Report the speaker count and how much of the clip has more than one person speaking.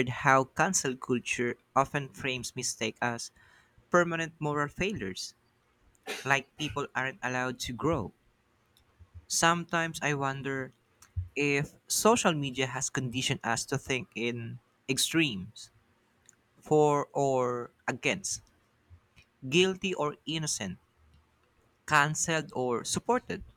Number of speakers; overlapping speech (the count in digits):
1, no overlap